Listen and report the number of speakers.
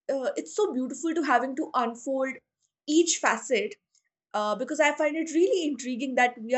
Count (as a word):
one